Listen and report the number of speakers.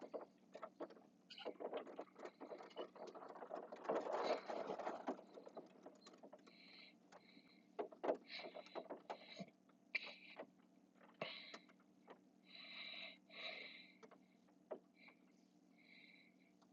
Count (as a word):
zero